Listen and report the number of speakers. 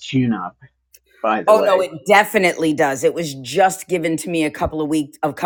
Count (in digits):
2